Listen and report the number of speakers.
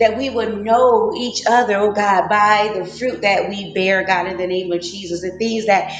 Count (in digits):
1